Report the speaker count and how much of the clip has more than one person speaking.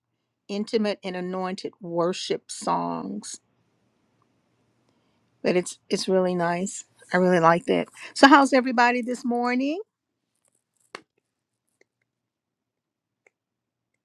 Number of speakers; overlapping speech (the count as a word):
one, no overlap